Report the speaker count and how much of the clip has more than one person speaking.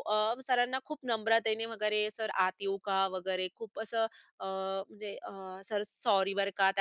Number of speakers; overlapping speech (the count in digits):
1, no overlap